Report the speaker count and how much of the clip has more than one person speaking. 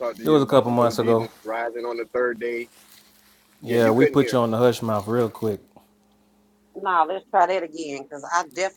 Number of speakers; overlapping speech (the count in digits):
3, about 20%